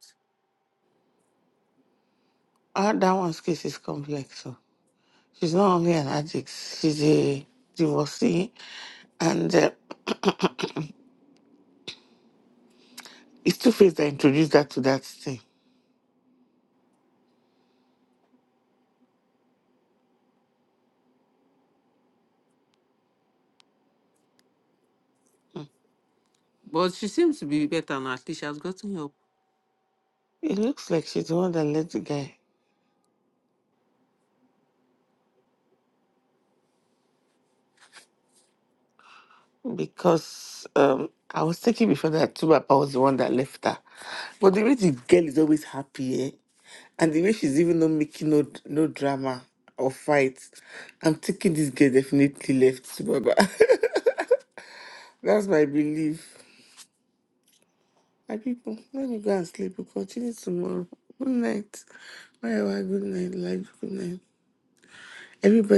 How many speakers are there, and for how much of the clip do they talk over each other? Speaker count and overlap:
2, no overlap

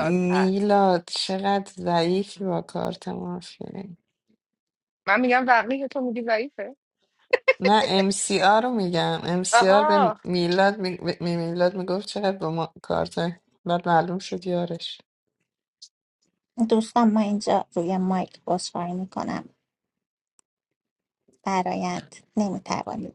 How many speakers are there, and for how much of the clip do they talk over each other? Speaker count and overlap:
3, about 5%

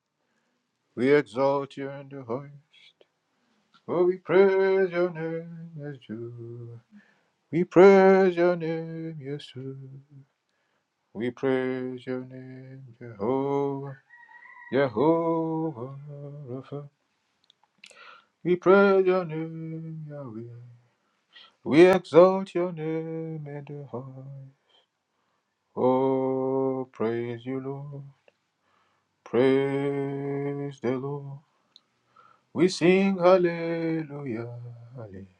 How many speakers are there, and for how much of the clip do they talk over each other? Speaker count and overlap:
1, no overlap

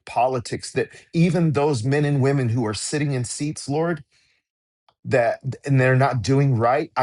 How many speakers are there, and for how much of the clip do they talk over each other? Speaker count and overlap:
1, no overlap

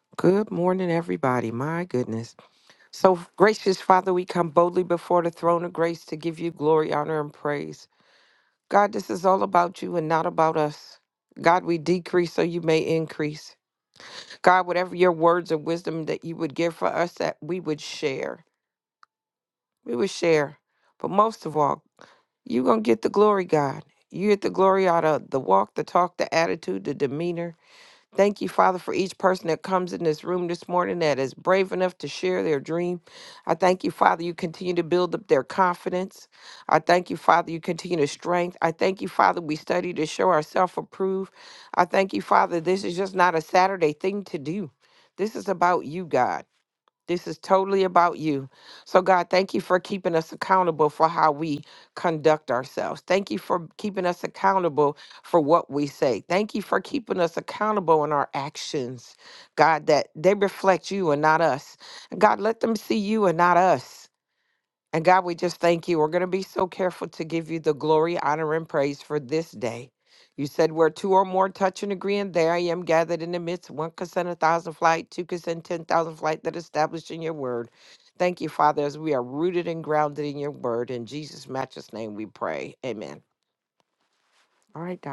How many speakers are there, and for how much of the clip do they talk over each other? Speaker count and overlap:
1, no overlap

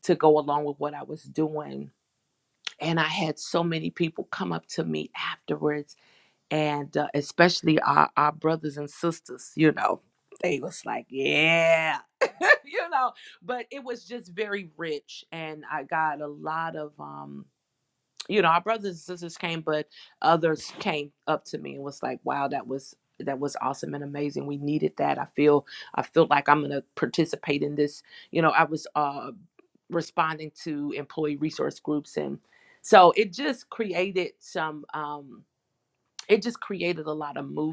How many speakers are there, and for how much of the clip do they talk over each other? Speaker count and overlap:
1, no overlap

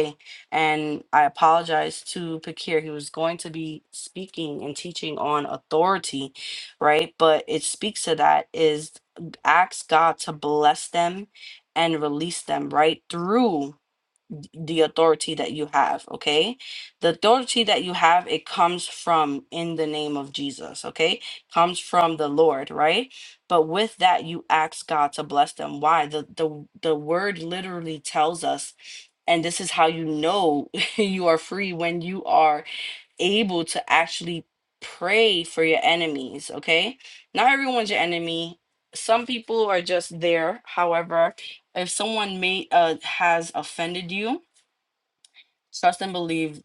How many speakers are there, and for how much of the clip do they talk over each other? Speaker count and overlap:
1, no overlap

